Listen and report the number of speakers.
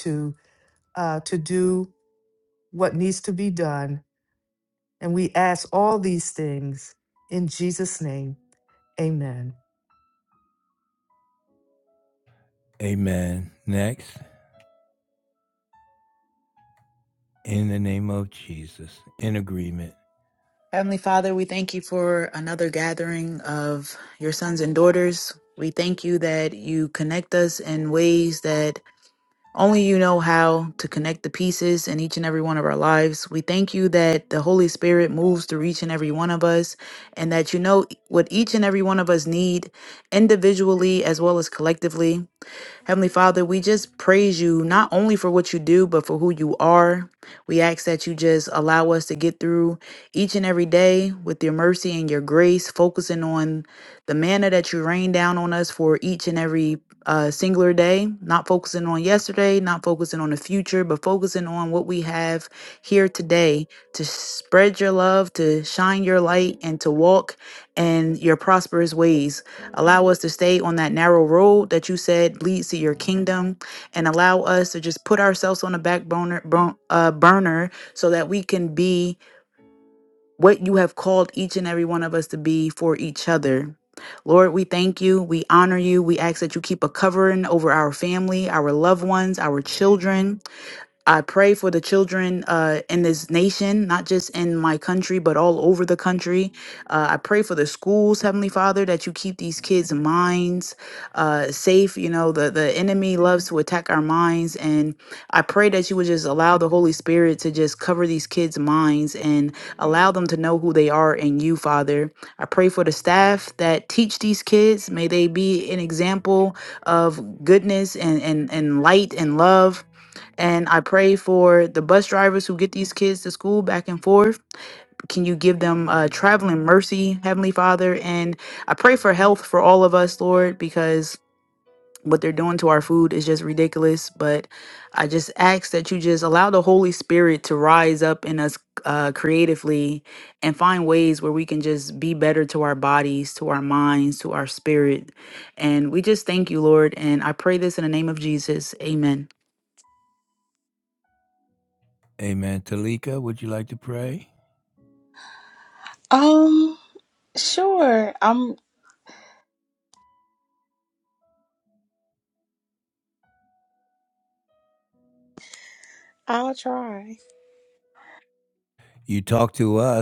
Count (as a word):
four